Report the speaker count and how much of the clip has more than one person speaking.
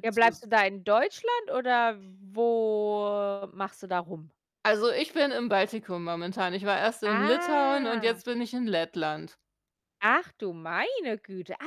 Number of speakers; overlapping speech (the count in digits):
2, about 9%